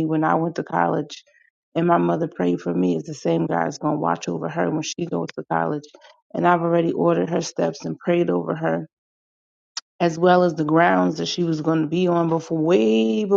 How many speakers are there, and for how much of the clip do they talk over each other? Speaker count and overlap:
1, no overlap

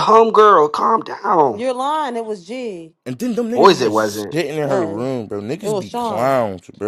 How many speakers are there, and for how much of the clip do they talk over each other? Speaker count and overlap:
3, about 28%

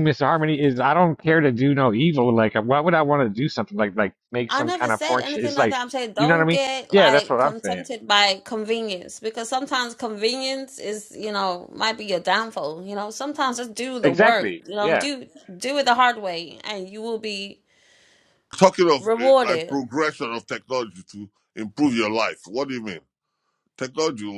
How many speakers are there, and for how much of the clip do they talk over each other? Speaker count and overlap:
3, about 18%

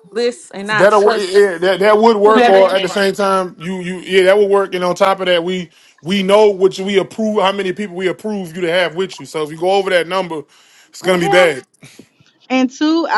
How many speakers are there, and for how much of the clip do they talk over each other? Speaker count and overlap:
3, about 11%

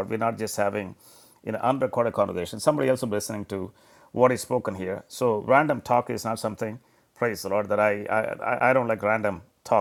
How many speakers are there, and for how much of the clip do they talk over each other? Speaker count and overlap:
1, no overlap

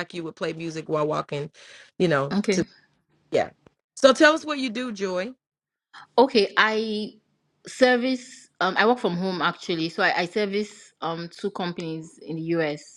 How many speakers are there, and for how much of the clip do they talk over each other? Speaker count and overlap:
2, about 3%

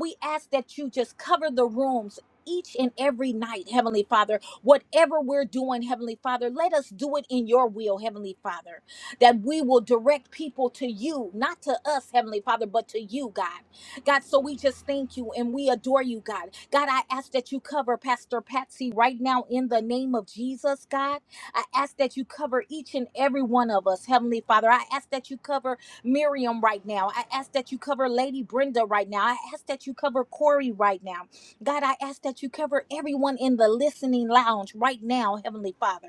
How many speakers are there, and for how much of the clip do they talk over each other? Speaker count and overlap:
1, no overlap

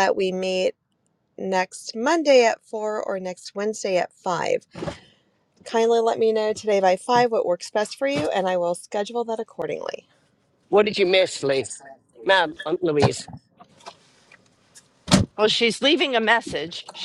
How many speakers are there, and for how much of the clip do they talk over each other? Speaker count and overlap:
3, no overlap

